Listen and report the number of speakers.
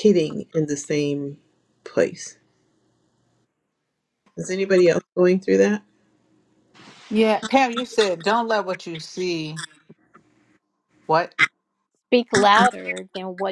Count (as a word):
three